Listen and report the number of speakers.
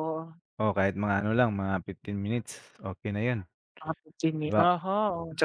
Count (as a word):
two